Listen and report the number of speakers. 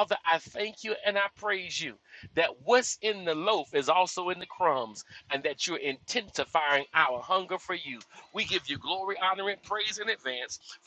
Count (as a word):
one